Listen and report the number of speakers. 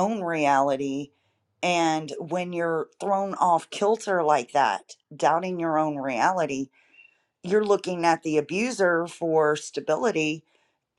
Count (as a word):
one